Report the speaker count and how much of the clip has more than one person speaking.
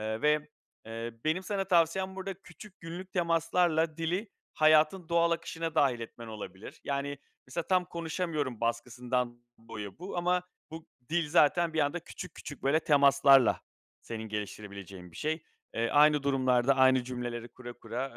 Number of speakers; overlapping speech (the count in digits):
1, no overlap